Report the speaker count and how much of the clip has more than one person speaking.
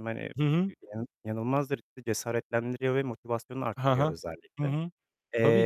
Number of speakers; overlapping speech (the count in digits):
2, about 12%